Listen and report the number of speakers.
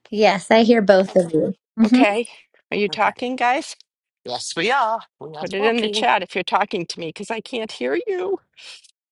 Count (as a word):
three